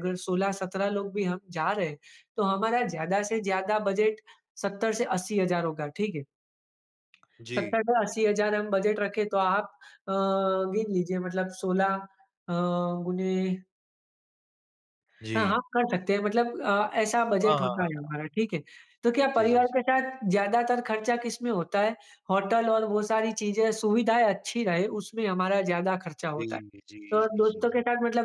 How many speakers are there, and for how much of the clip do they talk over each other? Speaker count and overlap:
2, about 6%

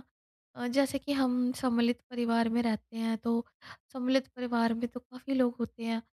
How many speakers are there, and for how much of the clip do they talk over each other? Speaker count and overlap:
1, no overlap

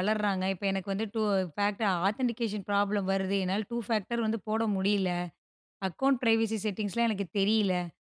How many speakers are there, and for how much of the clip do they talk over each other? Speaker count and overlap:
1, no overlap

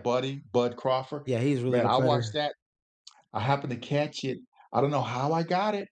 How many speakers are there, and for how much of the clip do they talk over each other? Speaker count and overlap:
2, about 10%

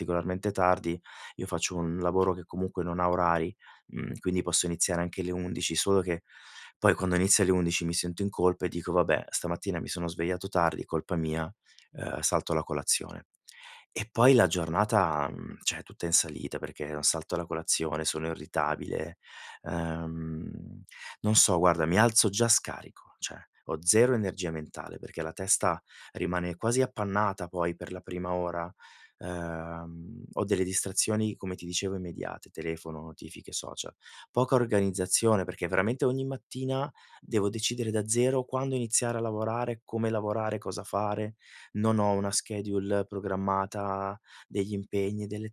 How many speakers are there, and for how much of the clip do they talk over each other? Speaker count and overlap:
1, no overlap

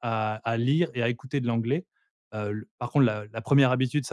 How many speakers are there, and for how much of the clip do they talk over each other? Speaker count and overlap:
1, no overlap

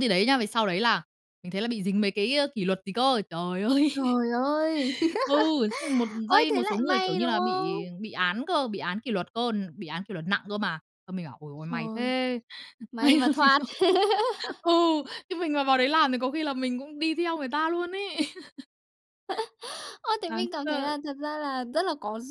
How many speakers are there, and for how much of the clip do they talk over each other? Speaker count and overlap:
2, about 15%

